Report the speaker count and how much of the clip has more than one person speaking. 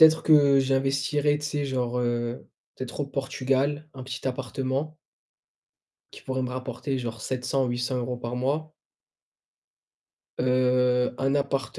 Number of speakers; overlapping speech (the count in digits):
1, no overlap